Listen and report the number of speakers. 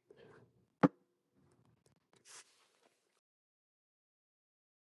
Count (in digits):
0